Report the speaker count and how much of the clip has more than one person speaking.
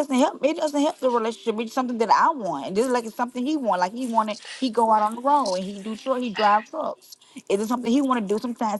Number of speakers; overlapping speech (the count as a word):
one, no overlap